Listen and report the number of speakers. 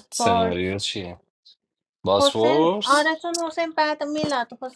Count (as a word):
two